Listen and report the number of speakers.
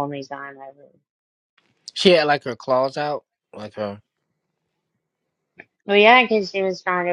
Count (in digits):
2